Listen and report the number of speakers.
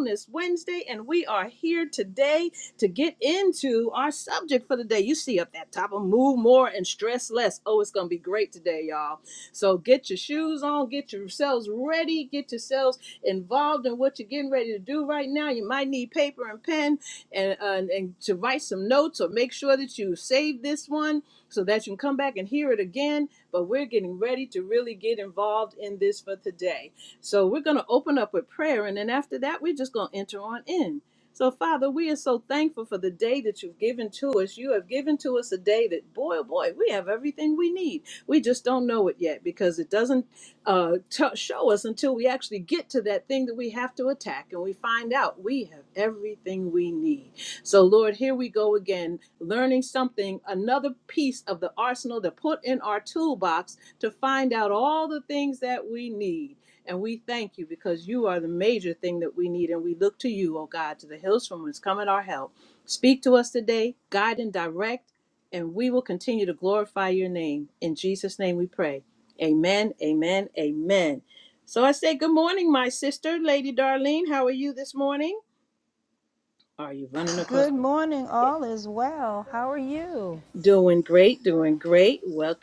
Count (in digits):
2